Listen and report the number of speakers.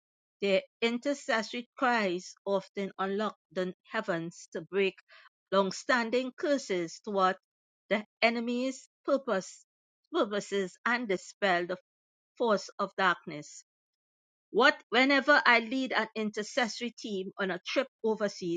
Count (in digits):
1